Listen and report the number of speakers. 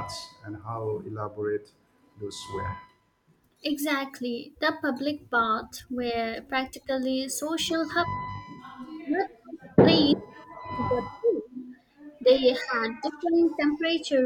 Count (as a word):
two